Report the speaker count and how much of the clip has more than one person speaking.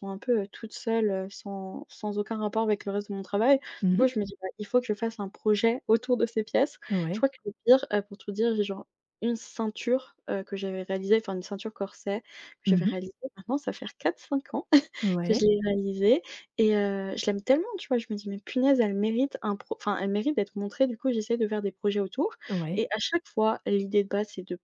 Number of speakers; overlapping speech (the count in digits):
2, about 4%